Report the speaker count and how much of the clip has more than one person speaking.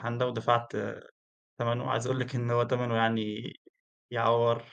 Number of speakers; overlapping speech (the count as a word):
one, no overlap